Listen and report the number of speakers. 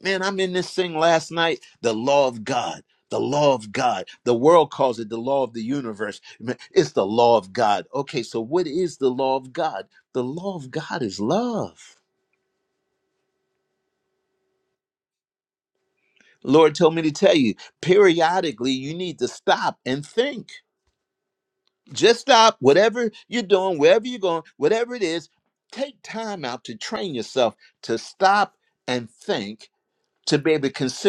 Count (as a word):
one